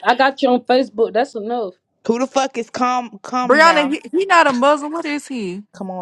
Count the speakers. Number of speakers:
3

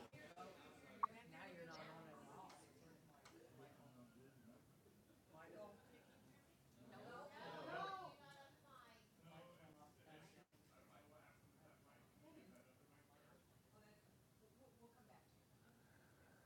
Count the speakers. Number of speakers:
0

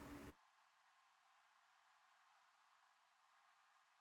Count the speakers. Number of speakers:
0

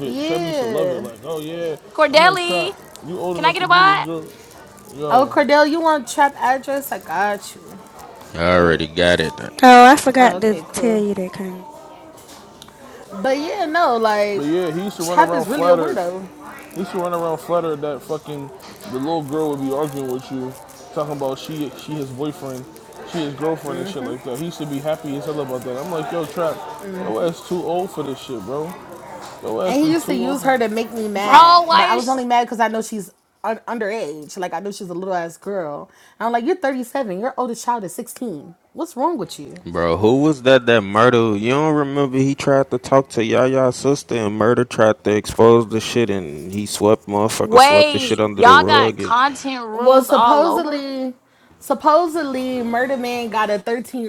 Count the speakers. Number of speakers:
5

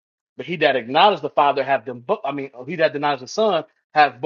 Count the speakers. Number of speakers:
1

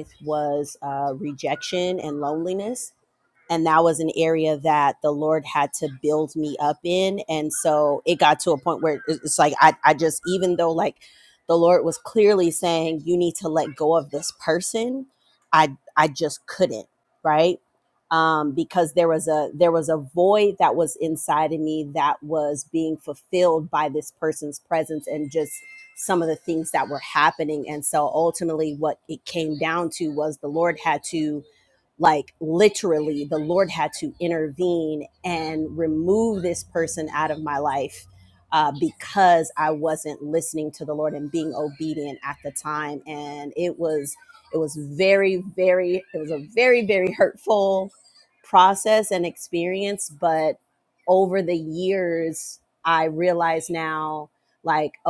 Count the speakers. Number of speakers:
1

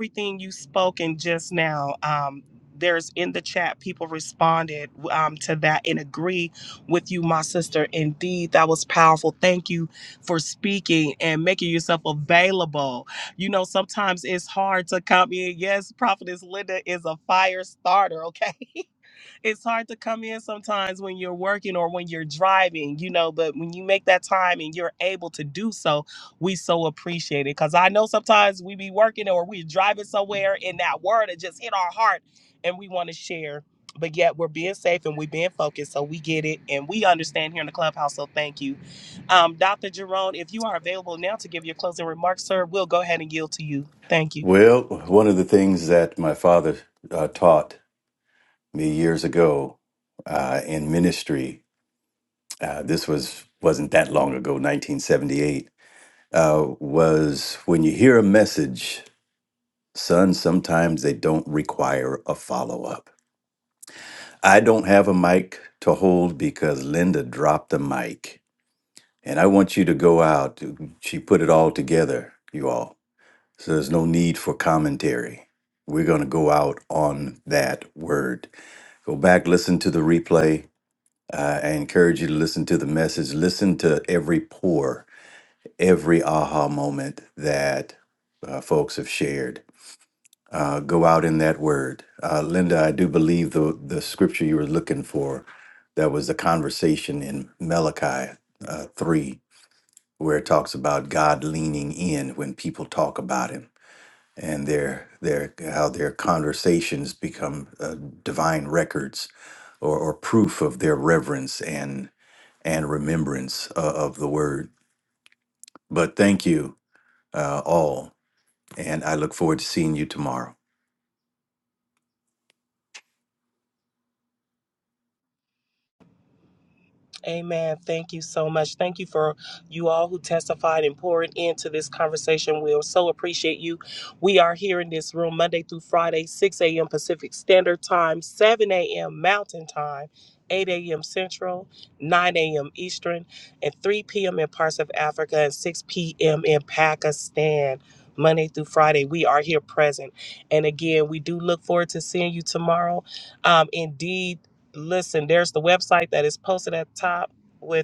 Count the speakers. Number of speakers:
2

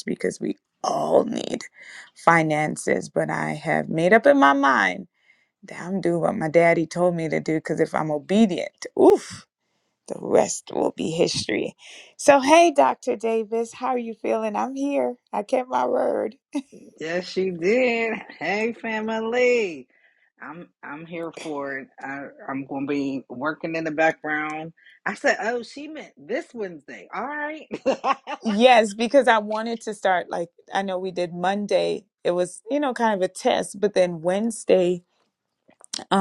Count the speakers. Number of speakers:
2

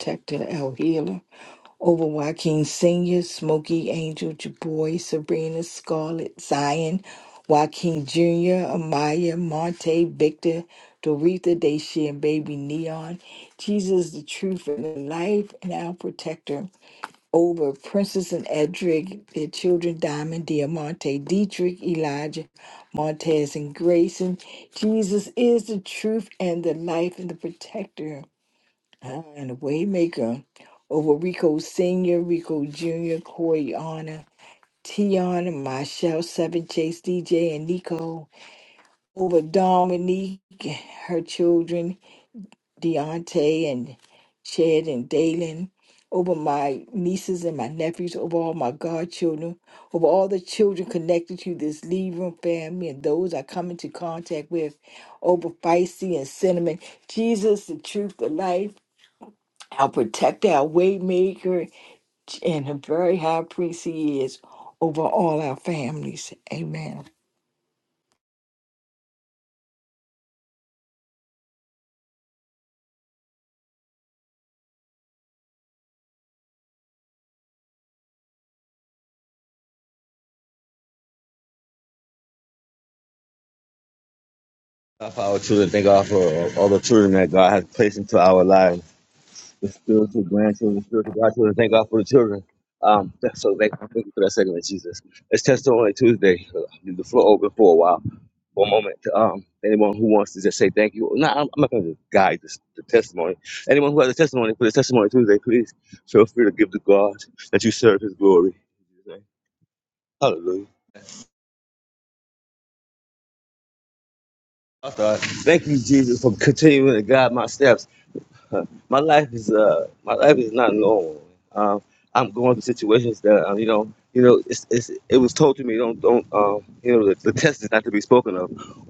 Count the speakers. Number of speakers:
2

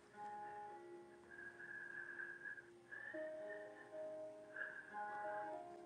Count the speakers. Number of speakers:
0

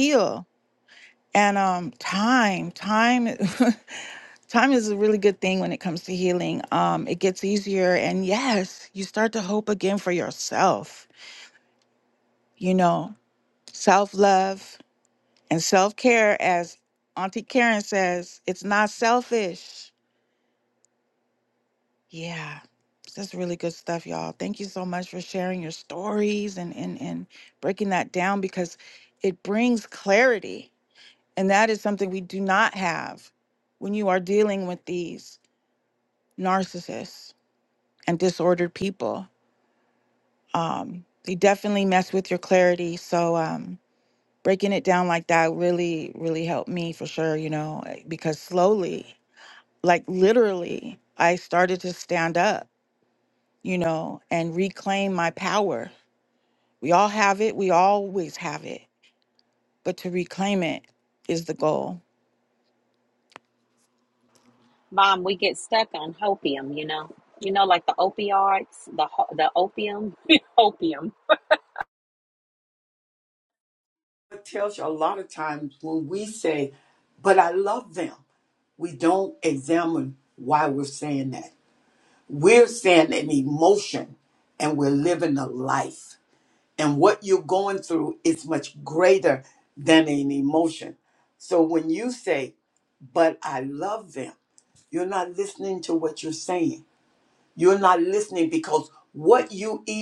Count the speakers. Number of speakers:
3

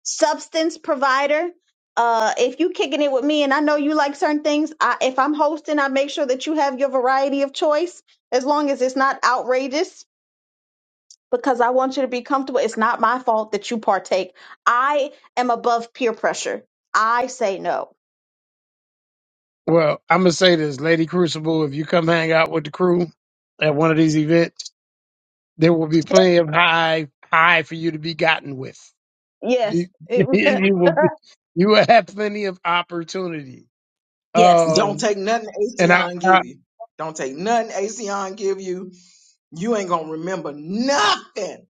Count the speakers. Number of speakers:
3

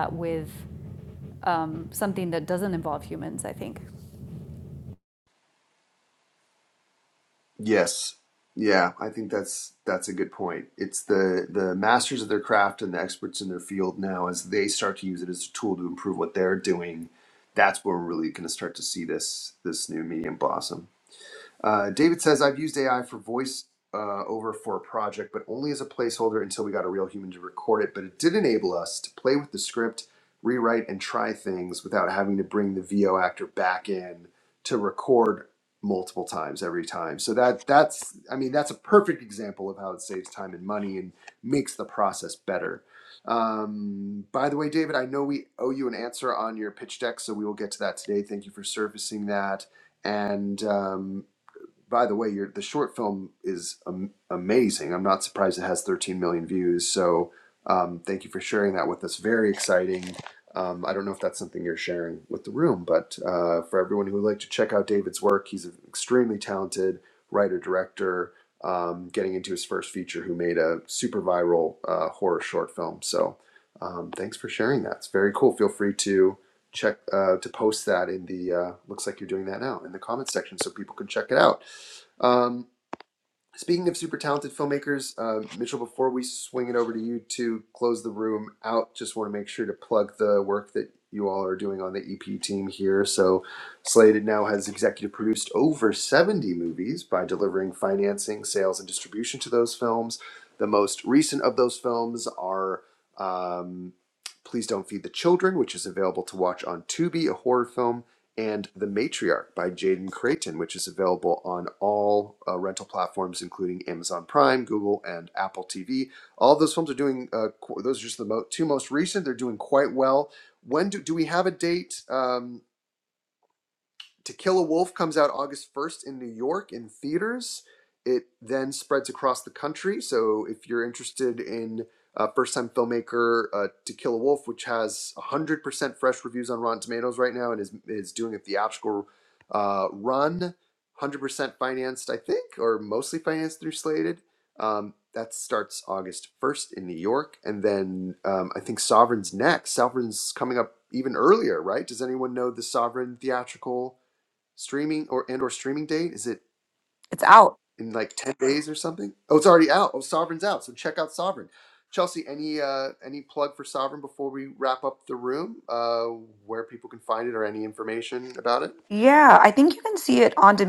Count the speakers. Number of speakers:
3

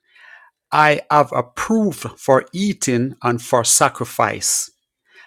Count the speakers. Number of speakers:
1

